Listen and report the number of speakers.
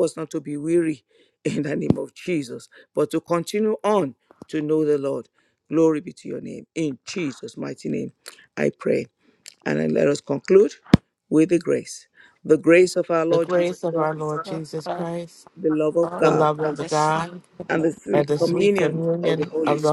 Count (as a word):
two